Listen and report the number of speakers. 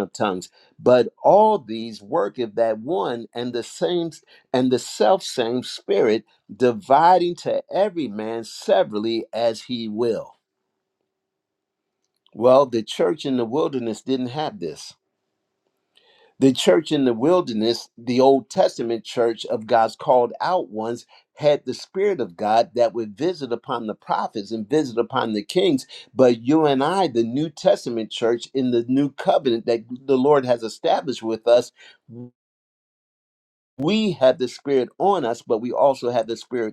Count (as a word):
one